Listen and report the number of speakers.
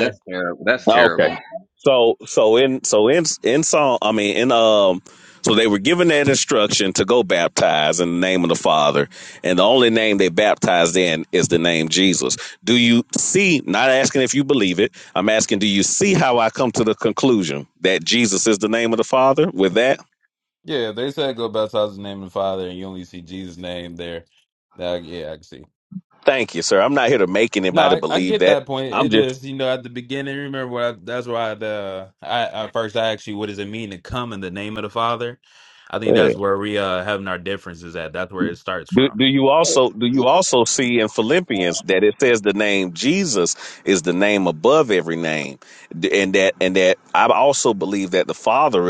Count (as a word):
three